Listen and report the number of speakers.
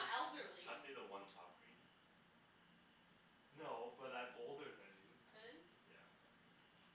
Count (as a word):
three